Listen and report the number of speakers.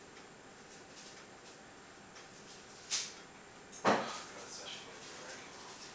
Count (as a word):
one